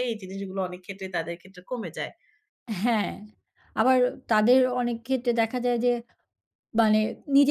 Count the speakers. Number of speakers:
2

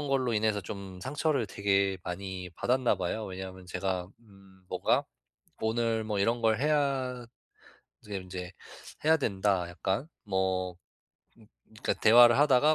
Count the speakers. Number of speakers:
1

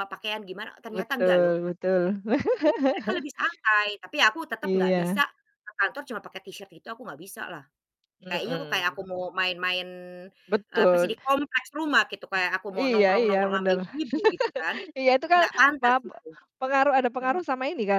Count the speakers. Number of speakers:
2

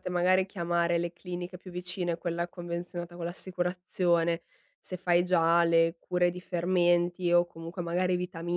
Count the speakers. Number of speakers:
1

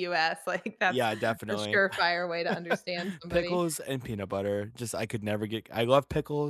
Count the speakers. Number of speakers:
2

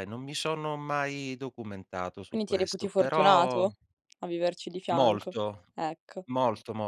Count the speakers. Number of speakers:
2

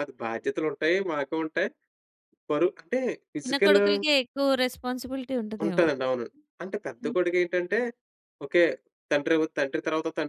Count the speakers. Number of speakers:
2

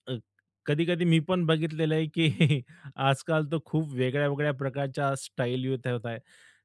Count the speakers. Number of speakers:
1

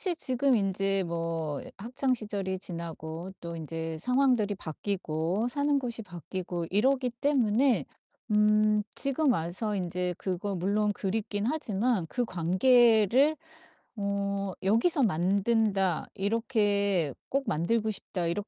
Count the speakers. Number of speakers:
1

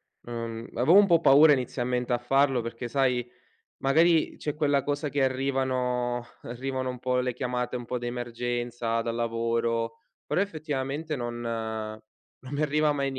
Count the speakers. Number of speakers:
1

